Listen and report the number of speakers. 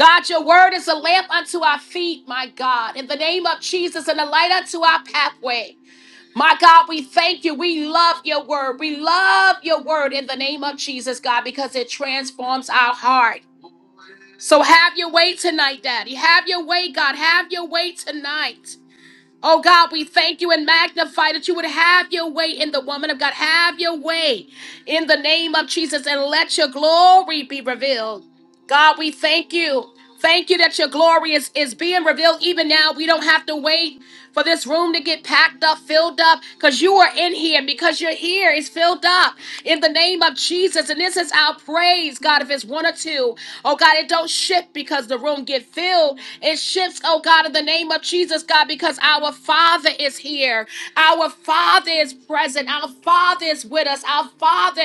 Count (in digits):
1